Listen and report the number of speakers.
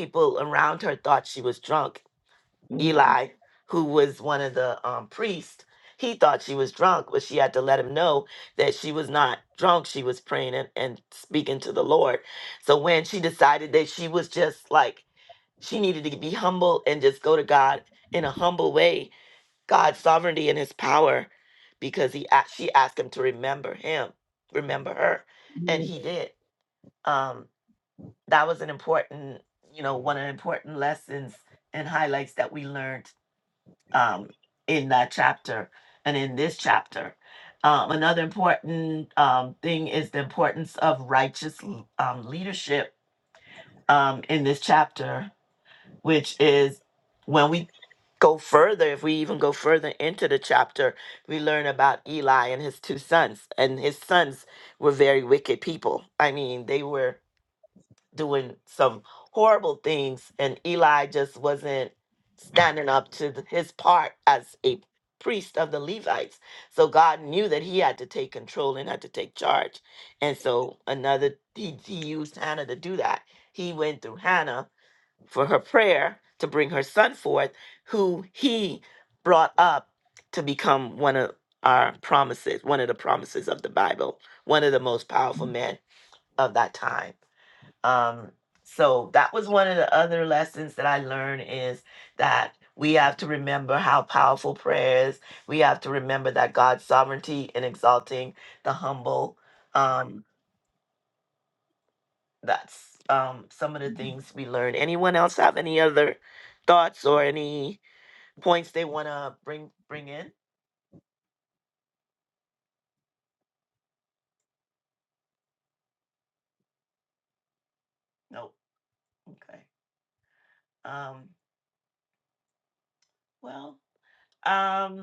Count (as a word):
one